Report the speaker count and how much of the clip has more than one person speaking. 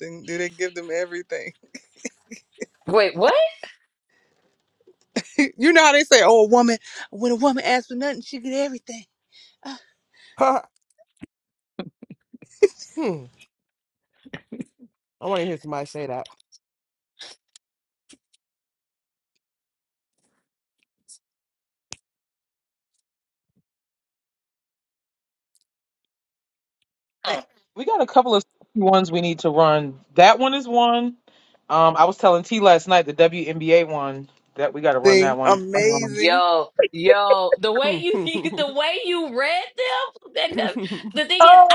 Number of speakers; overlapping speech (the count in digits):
4, about 5%